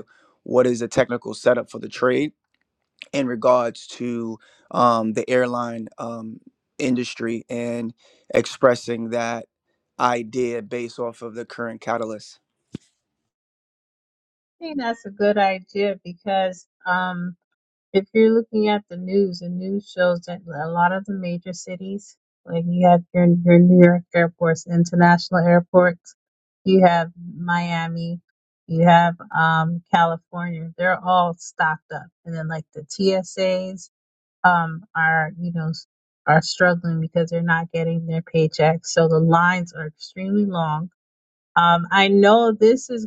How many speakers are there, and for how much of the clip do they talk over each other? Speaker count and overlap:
two, no overlap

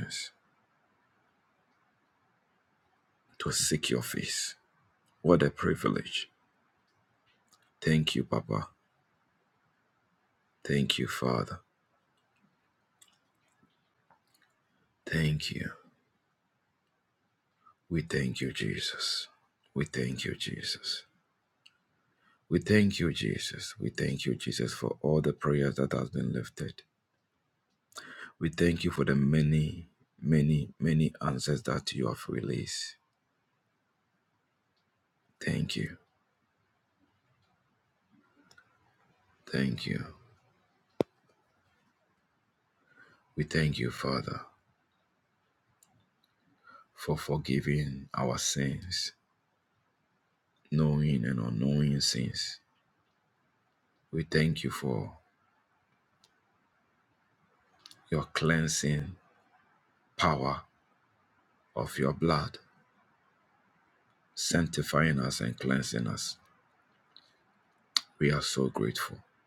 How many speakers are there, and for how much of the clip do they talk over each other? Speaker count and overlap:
one, no overlap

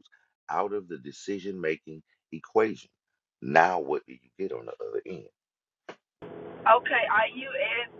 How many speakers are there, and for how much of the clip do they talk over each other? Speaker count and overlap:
two, no overlap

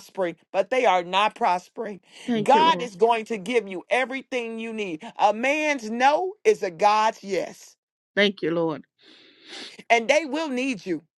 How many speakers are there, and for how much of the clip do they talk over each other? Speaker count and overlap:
two, about 4%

